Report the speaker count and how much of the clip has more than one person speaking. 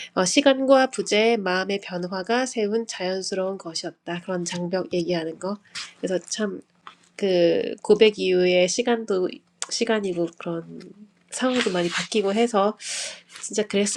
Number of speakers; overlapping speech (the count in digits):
1, no overlap